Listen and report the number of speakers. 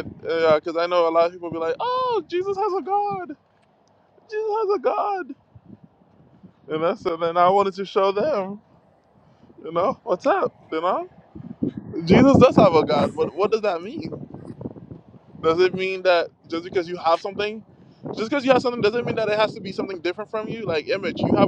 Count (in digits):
1